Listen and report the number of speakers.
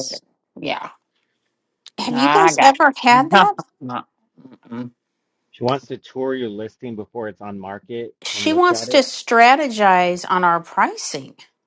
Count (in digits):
3